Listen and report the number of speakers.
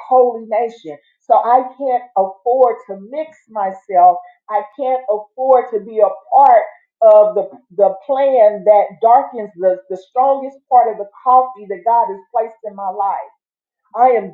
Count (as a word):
one